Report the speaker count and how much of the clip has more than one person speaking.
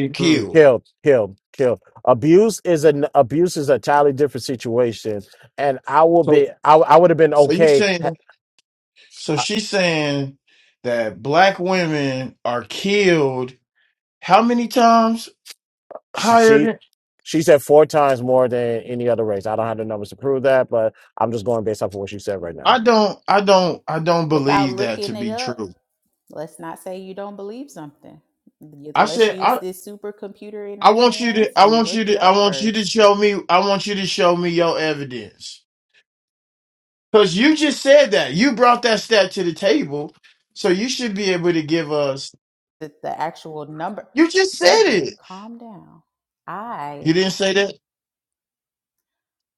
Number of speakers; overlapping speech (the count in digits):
3, about 13%